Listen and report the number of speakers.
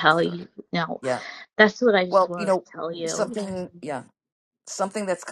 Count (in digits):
2